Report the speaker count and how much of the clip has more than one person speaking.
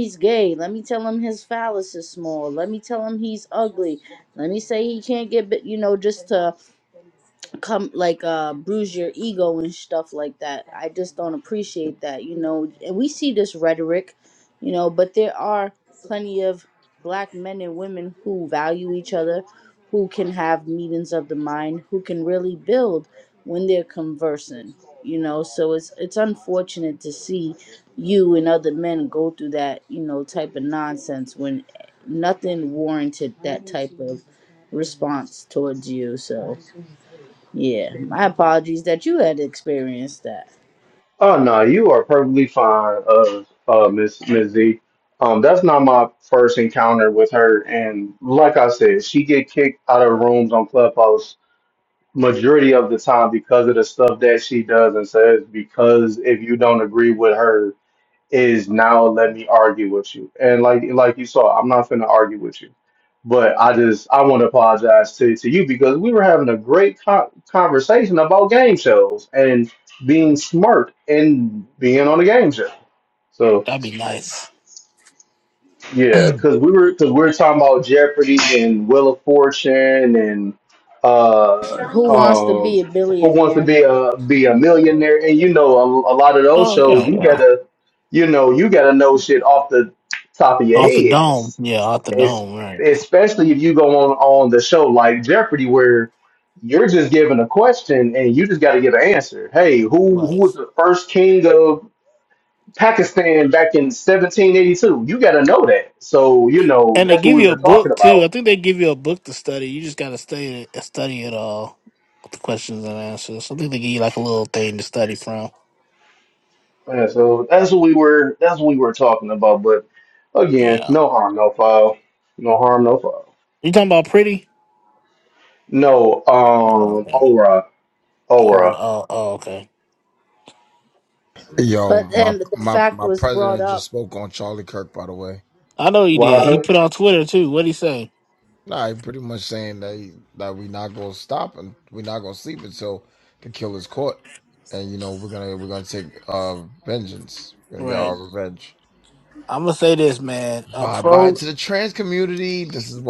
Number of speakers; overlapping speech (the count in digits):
4, about 6%